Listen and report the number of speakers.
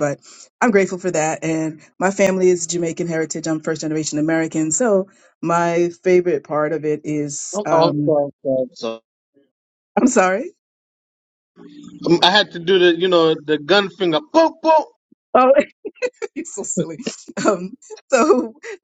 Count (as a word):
two